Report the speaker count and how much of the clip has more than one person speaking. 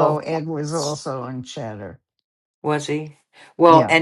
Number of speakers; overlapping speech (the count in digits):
2, about 16%